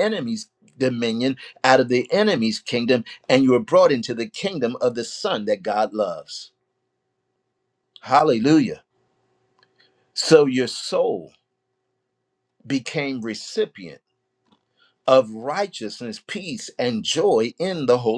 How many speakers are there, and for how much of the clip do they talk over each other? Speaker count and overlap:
one, no overlap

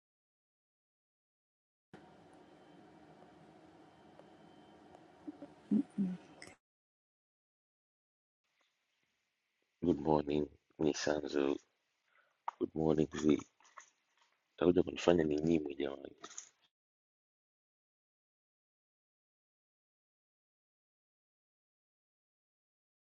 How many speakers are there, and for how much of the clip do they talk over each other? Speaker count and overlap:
one, no overlap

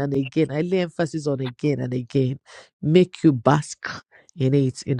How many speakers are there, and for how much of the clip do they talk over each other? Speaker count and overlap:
one, no overlap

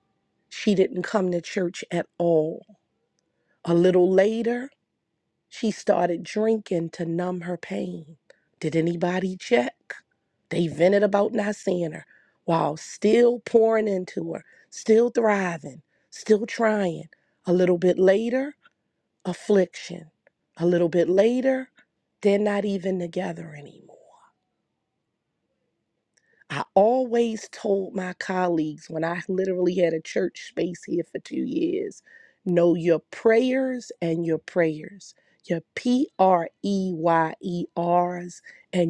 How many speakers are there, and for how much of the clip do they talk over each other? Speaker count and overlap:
one, no overlap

